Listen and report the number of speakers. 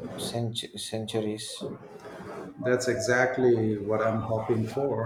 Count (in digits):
2